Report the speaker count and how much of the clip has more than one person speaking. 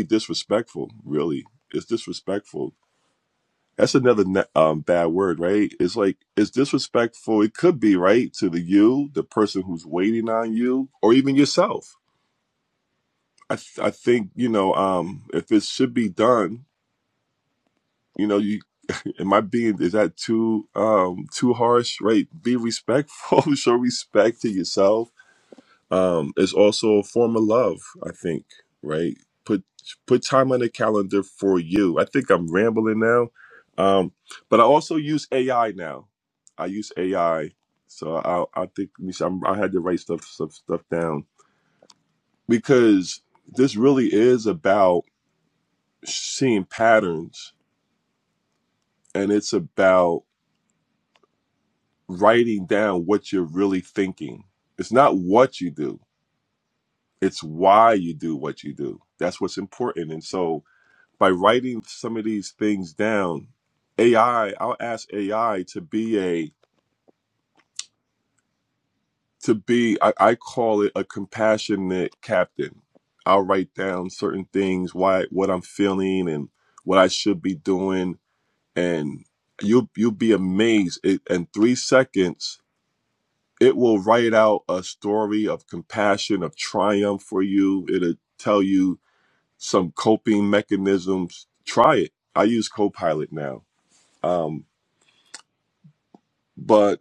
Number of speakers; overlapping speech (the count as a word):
one, no overlap